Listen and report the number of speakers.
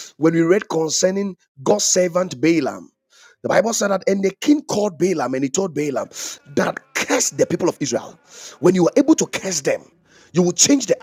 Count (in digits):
1